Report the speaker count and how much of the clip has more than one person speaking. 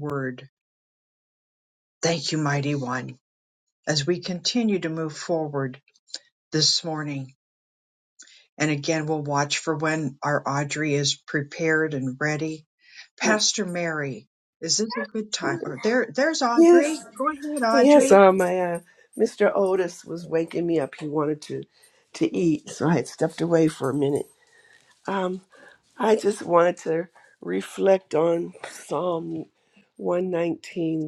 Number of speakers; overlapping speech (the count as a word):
two, about 3%